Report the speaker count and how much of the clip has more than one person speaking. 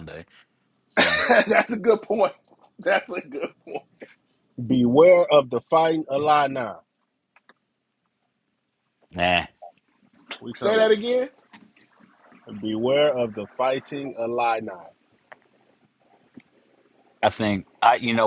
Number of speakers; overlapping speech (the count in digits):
3, about 2%